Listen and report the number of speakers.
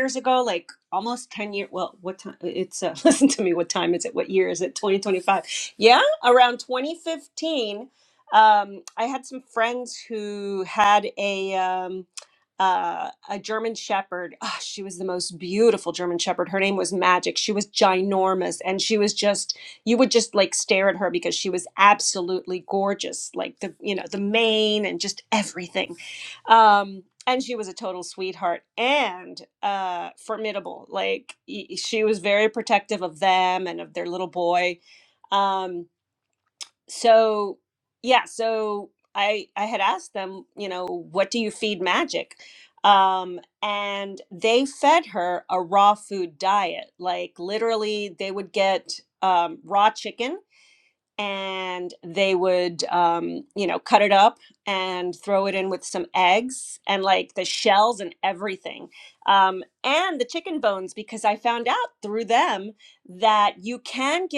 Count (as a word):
one